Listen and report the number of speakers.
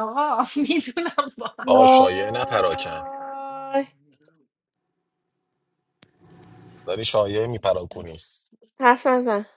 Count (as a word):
three